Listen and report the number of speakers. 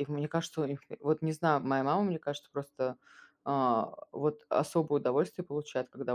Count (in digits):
1